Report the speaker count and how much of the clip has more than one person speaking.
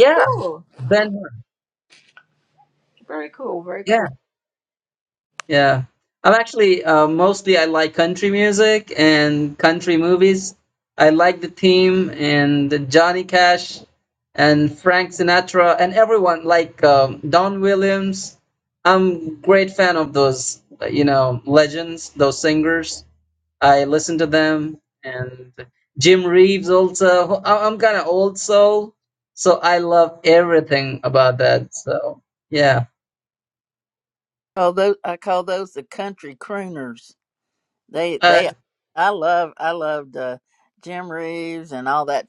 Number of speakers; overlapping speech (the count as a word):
three, about 2%